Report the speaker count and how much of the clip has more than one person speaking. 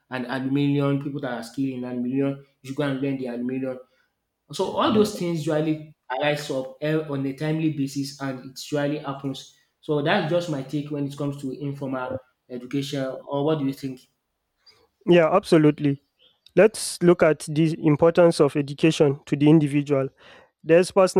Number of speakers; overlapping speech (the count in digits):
2, no overlap